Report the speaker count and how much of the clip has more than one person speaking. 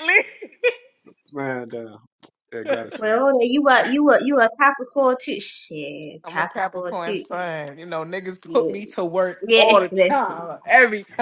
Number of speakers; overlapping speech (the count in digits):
3, about 23%